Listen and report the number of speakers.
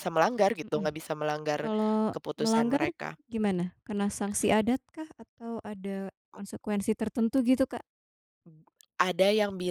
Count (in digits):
2